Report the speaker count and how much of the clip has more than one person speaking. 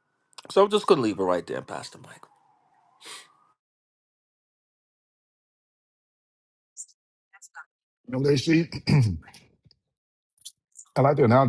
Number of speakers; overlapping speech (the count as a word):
two, no overlap